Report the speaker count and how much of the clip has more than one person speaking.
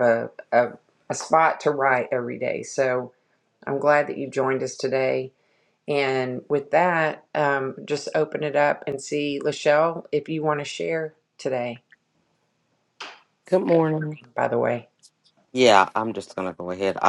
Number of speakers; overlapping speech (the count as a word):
two, no overlap